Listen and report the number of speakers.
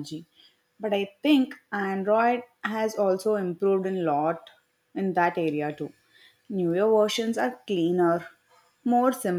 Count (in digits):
1